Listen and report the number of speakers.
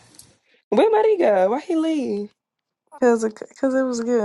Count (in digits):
2